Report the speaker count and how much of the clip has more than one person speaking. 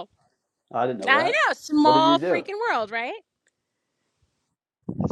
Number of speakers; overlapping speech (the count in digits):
2, about 20%